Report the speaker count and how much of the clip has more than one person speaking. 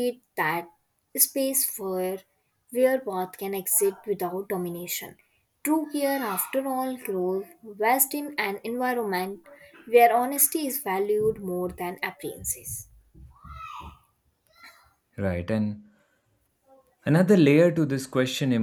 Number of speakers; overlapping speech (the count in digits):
2, no overlap